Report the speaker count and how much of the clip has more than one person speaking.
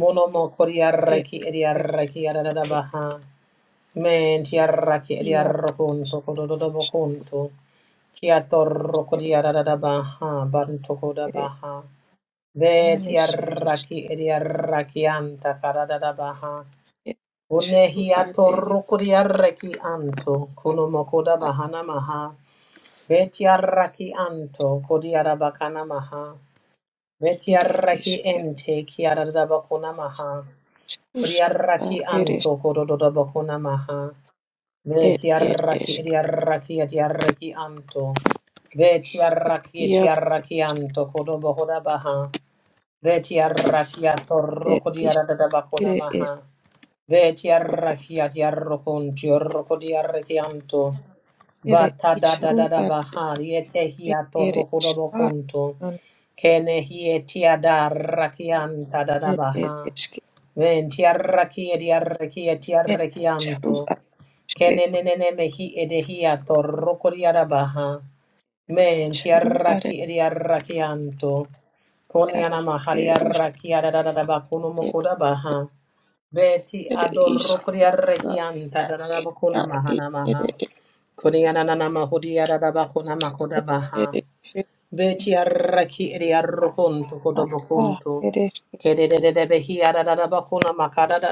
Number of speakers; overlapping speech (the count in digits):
2, about 16%